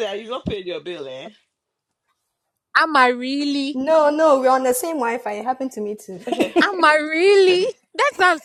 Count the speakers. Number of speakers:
three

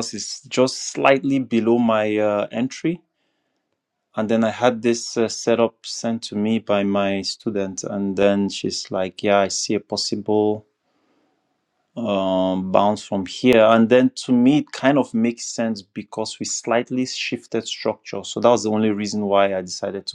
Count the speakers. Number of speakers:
one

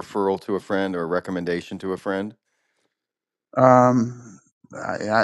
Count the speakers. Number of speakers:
two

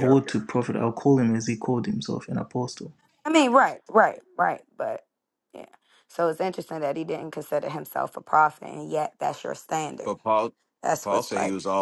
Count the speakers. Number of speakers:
three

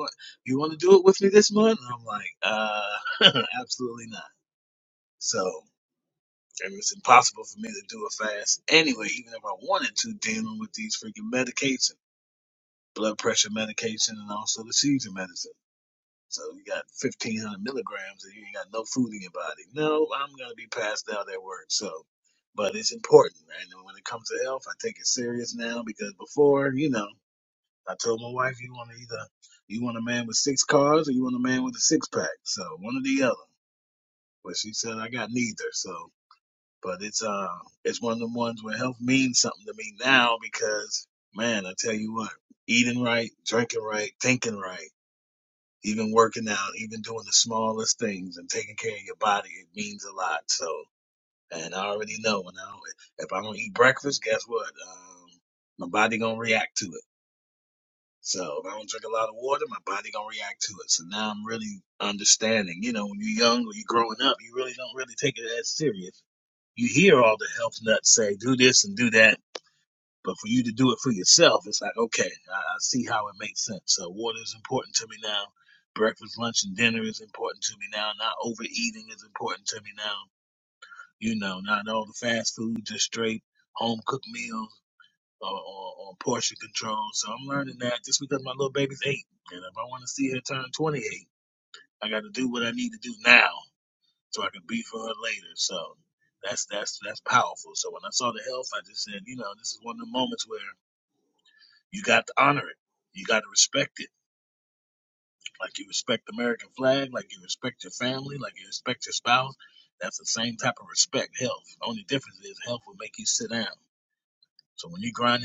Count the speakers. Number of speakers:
one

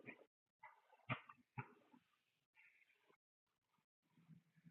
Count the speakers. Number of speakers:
zero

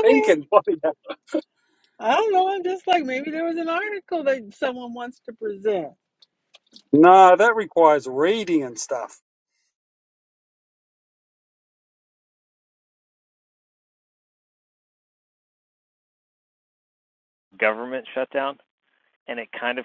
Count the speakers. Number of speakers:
three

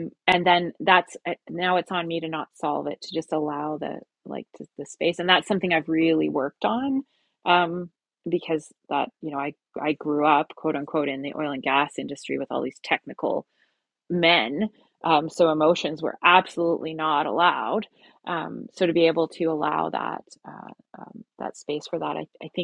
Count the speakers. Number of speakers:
one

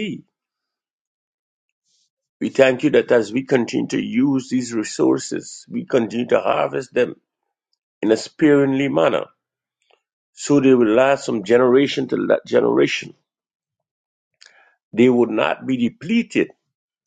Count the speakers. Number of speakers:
one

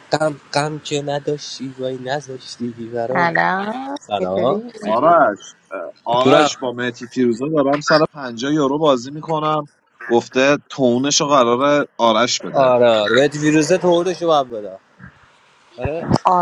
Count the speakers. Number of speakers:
three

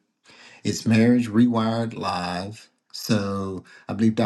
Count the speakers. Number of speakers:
one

